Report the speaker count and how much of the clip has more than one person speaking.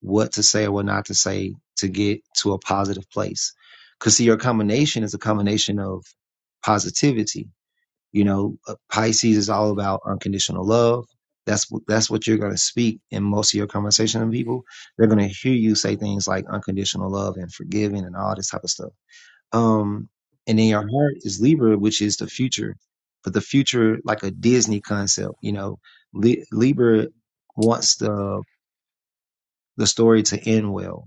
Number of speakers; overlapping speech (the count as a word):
one, no overlap